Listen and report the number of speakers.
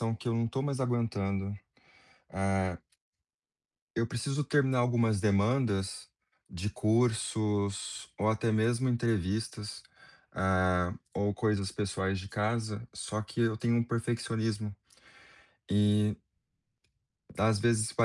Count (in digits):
1